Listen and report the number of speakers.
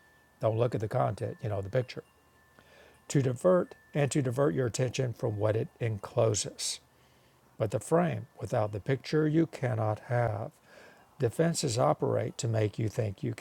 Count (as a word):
one